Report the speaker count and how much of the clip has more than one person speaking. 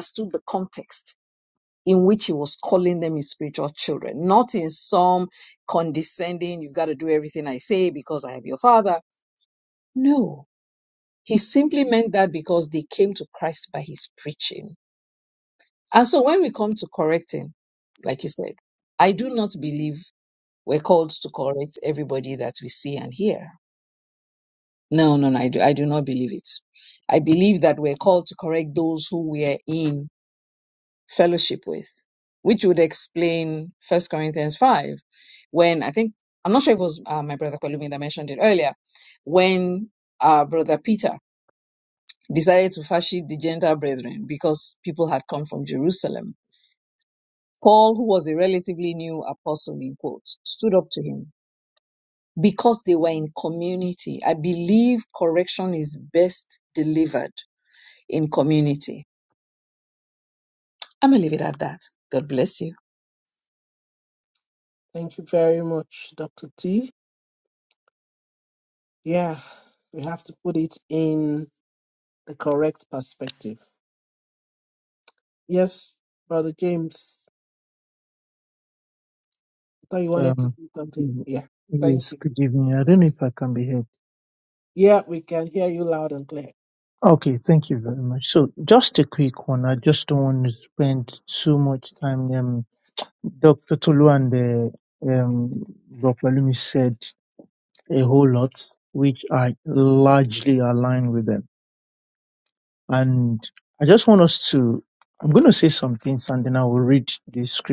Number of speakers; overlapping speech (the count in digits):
3, about 1%